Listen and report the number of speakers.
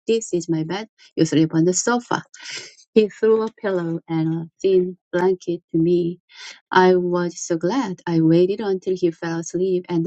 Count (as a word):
one